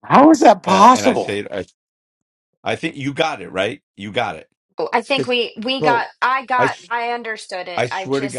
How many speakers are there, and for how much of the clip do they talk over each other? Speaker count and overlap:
three, about 23%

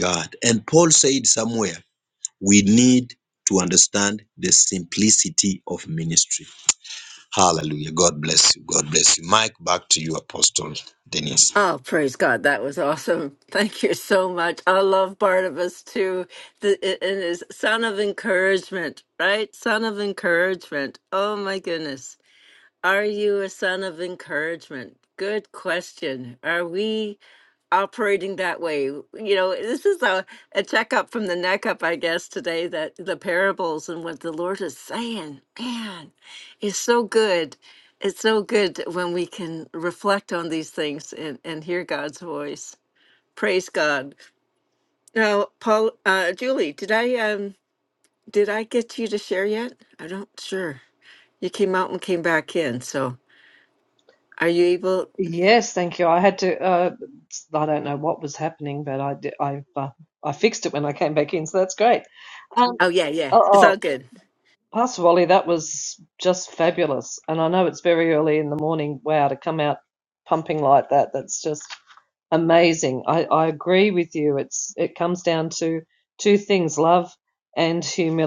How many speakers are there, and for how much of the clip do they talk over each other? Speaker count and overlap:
three, about 1%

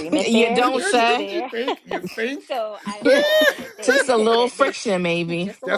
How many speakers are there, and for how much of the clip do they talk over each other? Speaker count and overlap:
three, about 46%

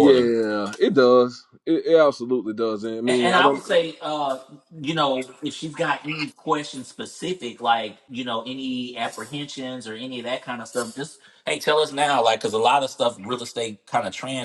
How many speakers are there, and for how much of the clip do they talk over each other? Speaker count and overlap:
two, about 6%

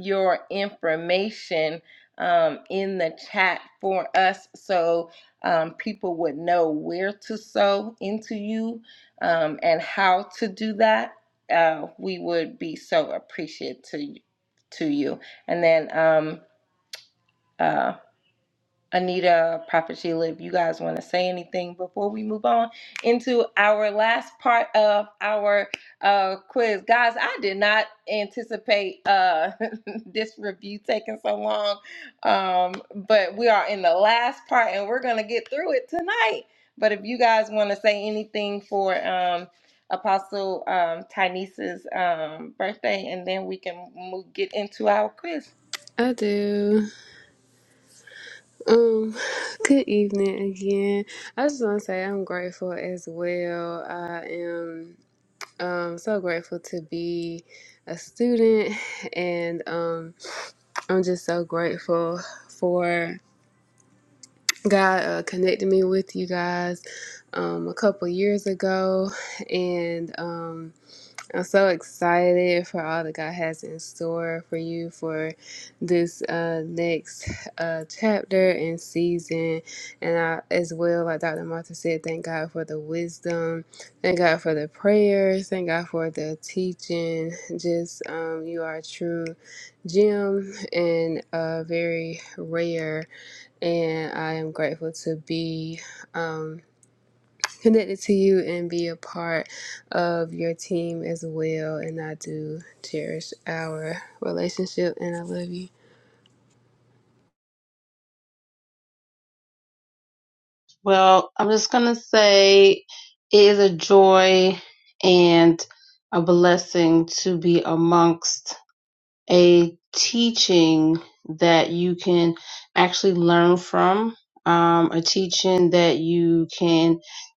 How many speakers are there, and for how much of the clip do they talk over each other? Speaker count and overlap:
three, no overlap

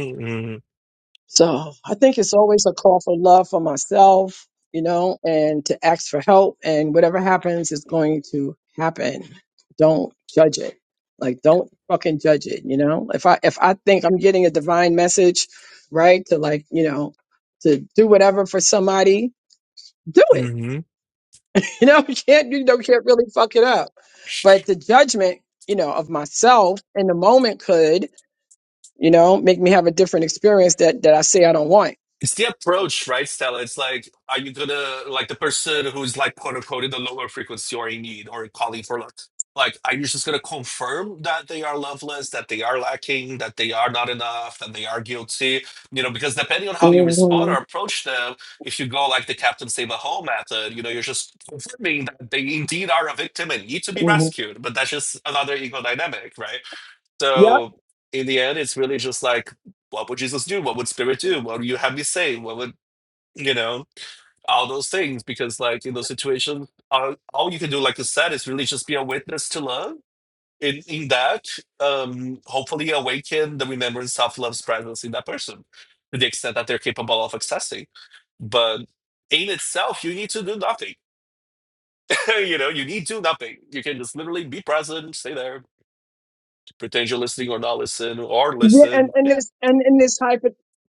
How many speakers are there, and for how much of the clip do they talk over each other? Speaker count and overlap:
two, about 1%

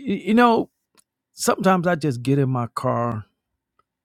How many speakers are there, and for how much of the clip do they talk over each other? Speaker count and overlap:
one, no overlap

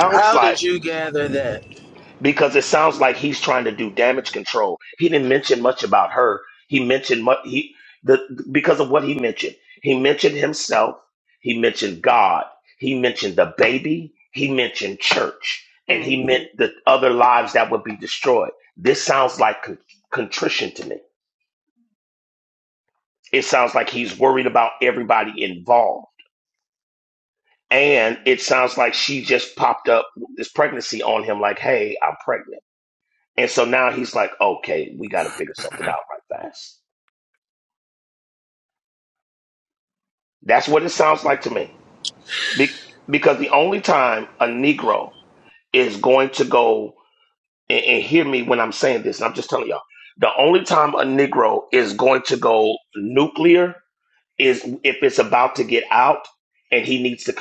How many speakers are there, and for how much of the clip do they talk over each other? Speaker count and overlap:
two, about 1%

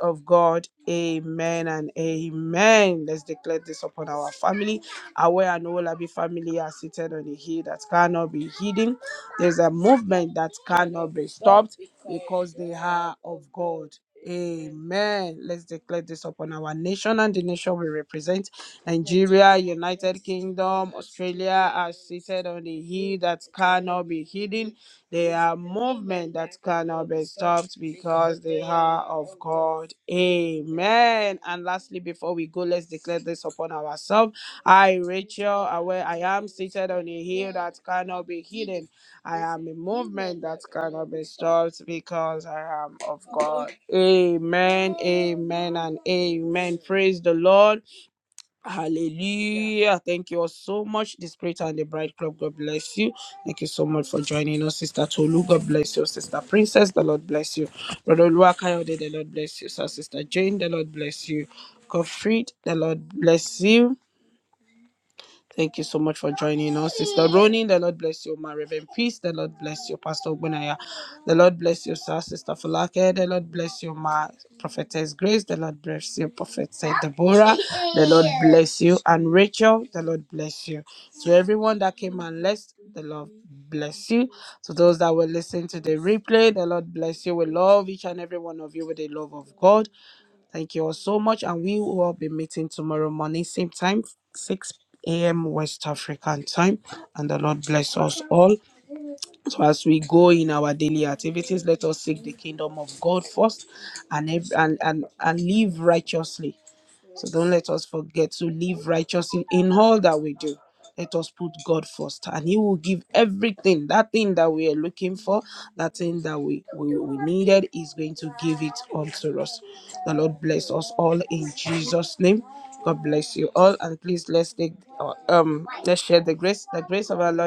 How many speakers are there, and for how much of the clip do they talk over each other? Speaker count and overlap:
one, no overlap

